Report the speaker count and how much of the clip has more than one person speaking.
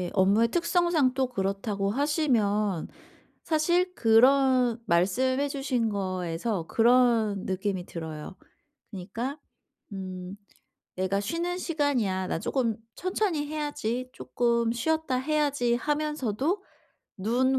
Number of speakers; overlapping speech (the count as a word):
one, no overlap